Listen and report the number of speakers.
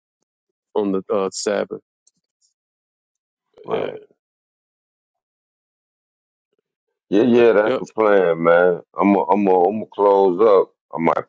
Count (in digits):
2